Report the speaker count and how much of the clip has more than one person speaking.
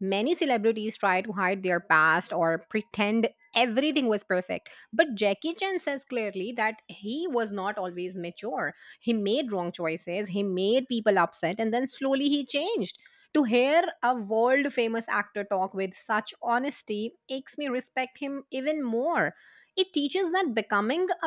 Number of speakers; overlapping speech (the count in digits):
1, no overlap